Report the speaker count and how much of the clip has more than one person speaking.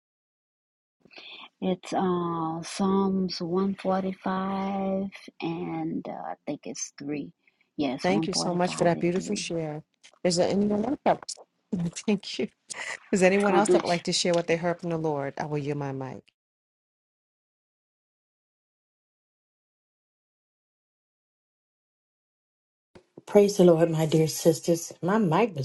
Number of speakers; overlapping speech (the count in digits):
3, about 8%